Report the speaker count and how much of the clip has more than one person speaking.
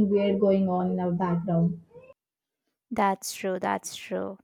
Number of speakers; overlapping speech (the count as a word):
two, no overlap